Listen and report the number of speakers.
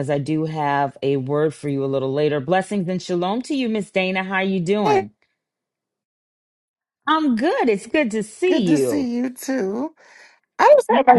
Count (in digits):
2